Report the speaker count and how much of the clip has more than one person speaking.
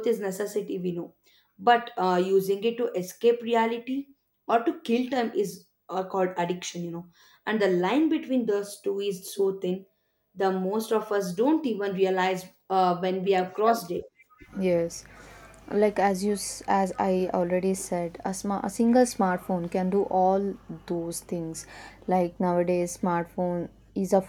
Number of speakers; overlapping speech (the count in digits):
2, no overlap